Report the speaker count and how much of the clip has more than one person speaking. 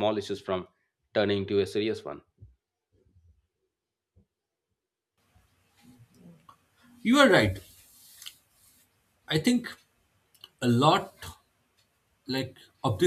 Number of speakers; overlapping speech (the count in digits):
2, no overlap